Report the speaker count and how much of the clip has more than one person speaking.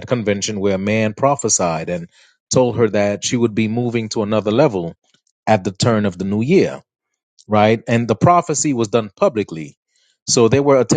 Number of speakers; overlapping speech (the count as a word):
one, no overlap